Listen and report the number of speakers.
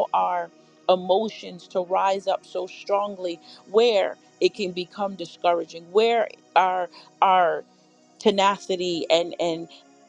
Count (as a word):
one